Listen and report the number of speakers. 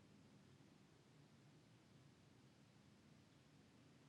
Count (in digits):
0